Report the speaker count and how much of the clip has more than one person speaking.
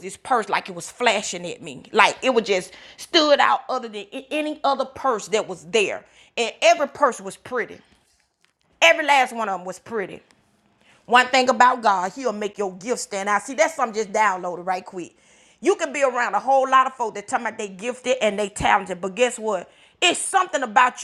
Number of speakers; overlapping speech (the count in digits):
1, no overlap